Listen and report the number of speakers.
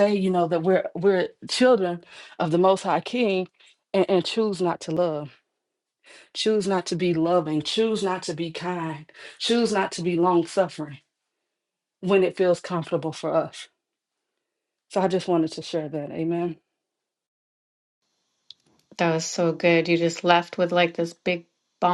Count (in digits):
2